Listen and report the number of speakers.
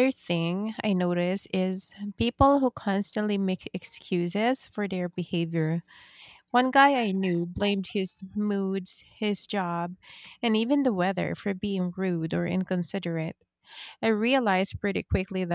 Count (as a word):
one